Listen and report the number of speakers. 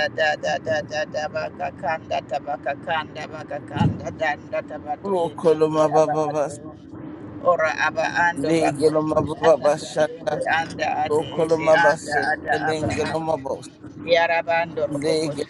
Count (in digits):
2